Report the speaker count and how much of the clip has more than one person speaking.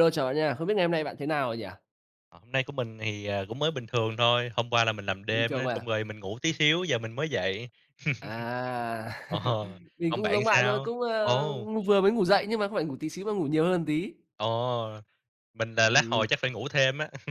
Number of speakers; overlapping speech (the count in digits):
2, about 12%